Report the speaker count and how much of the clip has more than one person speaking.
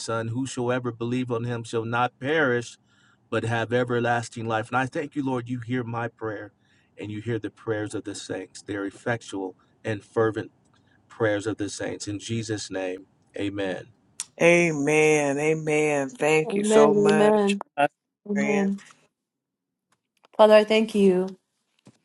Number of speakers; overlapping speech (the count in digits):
3, about 5%